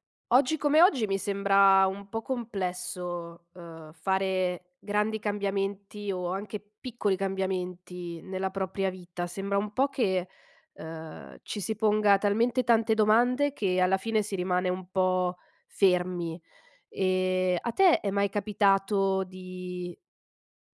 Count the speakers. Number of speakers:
1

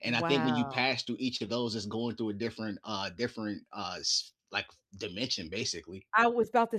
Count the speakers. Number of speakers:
2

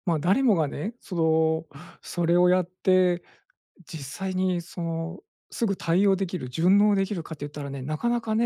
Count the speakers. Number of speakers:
1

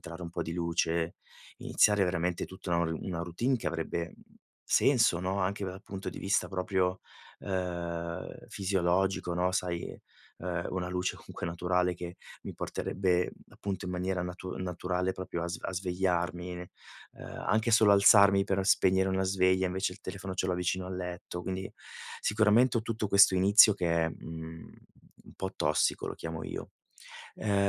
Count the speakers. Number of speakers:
1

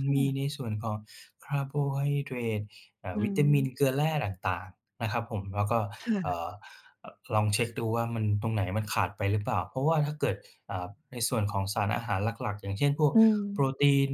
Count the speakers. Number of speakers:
2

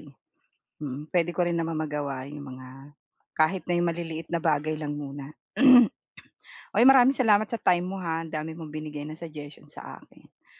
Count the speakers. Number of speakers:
1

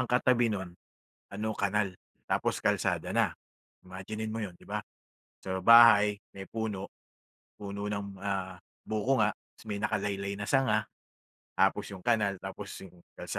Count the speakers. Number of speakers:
1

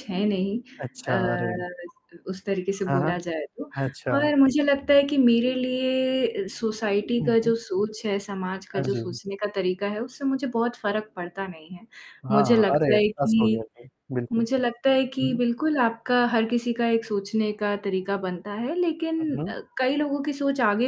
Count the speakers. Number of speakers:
2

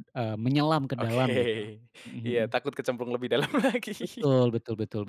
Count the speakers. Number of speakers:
2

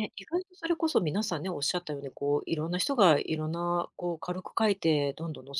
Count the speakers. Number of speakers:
1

